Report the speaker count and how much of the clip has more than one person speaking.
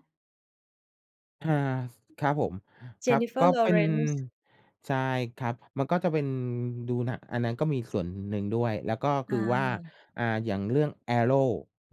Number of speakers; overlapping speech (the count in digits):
2, about 10%